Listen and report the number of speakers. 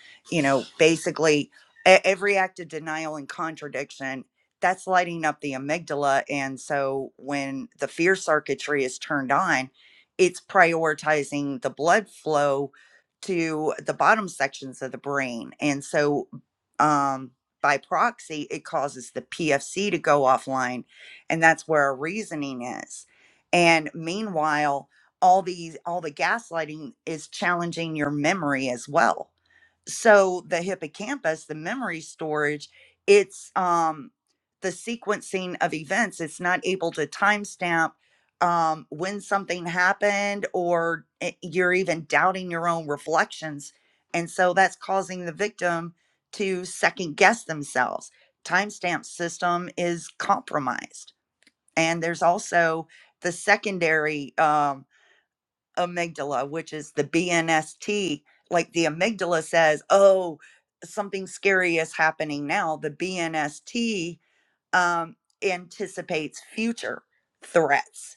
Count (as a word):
one